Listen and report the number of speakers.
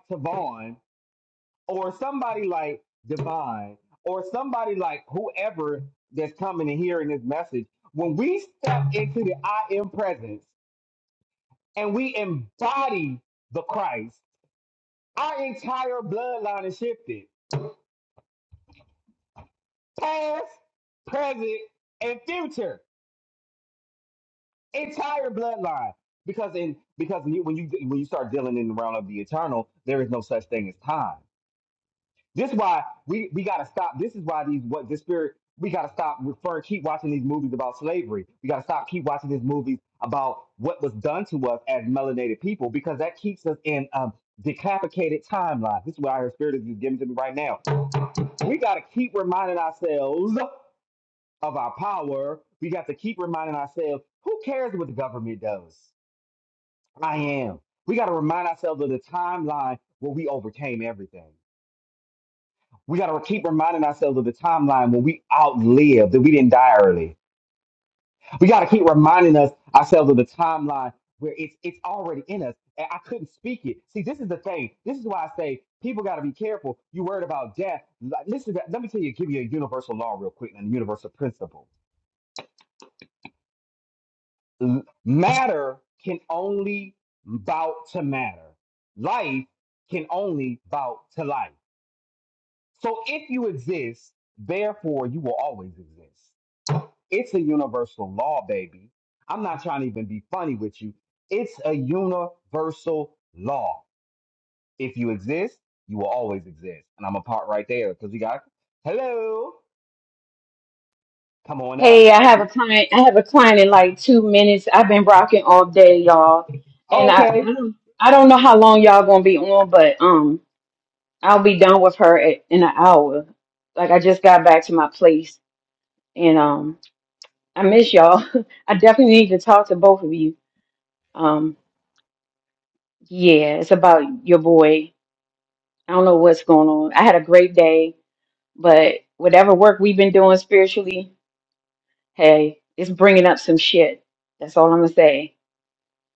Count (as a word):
two